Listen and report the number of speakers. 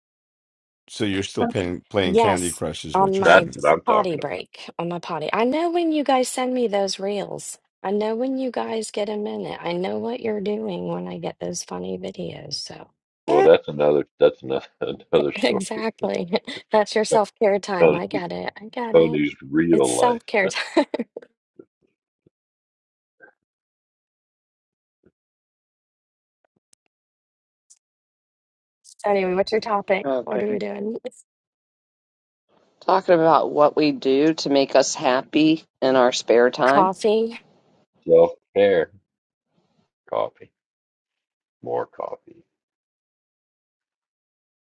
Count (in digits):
4